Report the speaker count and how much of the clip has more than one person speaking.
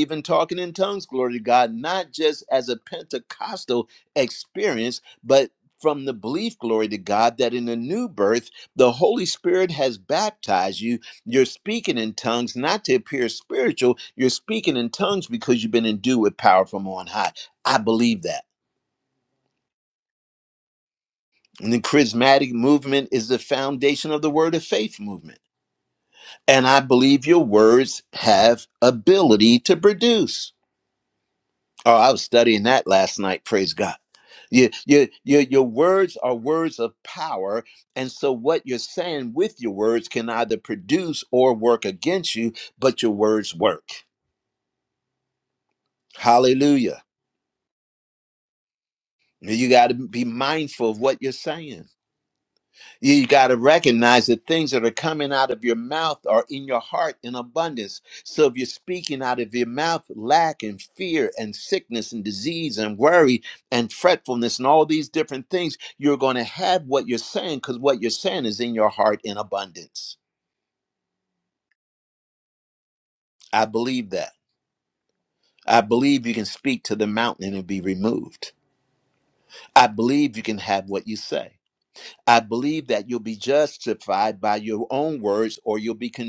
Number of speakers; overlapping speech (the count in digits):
1, no overlap